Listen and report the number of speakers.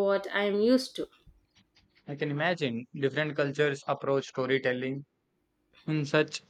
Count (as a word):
two